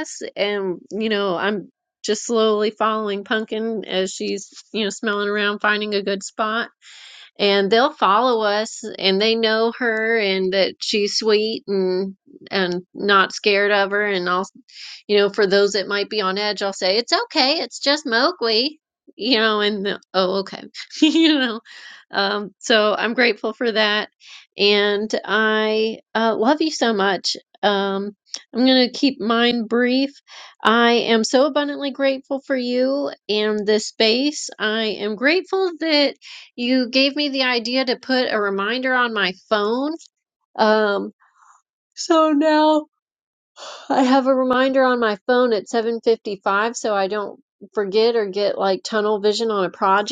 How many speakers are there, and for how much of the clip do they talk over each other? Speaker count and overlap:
one, no overlap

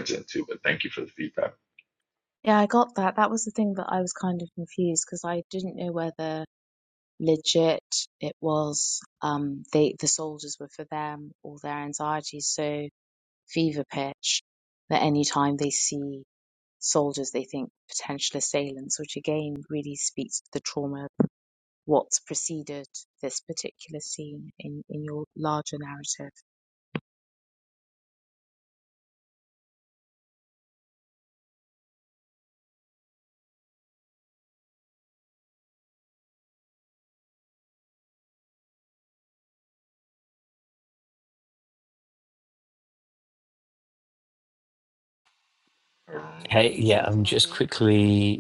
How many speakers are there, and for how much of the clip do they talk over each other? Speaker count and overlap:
three, about 1%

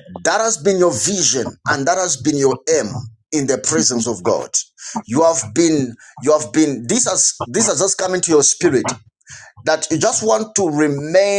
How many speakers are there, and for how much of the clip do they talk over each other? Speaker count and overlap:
one, no overlap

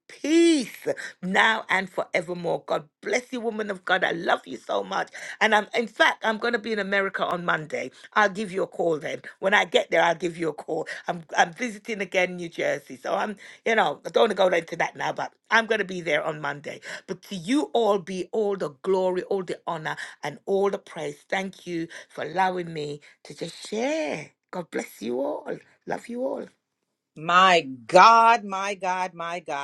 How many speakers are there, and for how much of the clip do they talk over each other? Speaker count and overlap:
two, no overlap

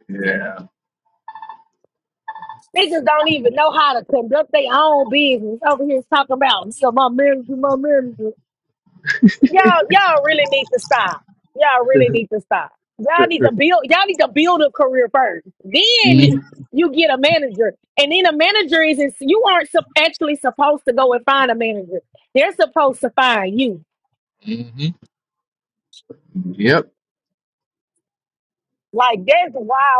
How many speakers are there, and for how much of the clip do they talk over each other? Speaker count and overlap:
two, under 1%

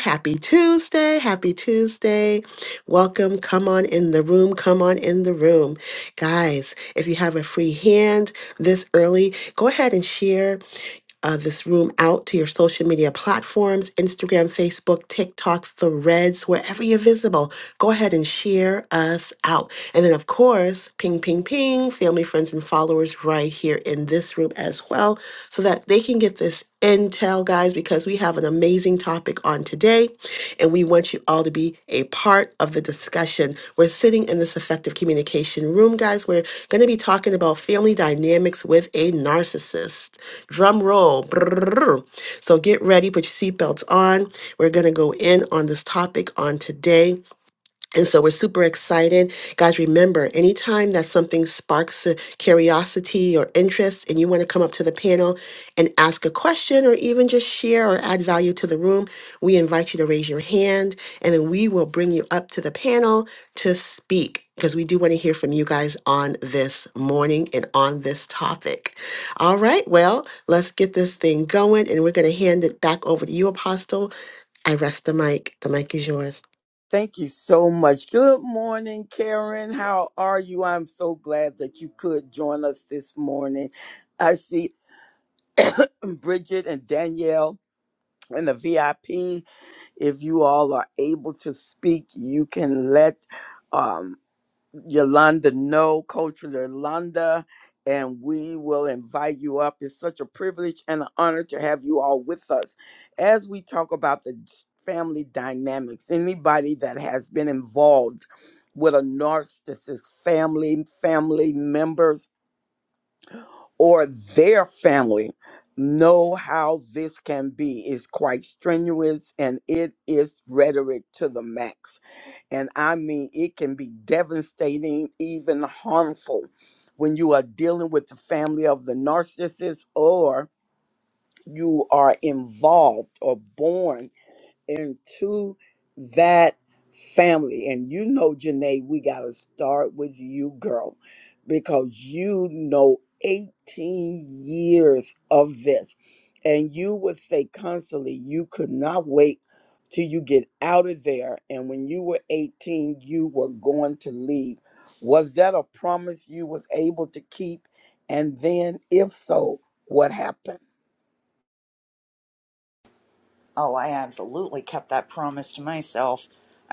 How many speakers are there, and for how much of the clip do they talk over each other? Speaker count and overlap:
three, no overlap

